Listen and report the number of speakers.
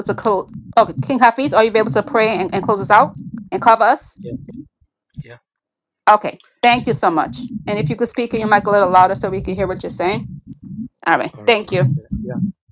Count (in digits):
2